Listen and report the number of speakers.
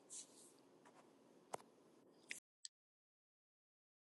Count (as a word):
zero